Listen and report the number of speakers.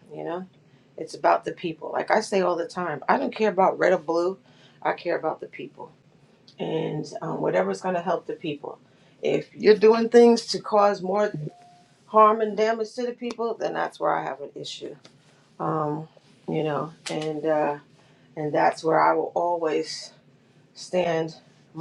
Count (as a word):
one